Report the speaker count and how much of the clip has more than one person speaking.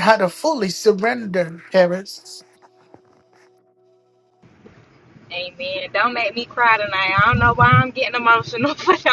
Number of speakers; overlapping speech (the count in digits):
2, no overlap